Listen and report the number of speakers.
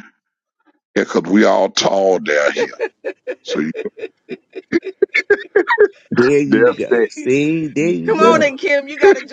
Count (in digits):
3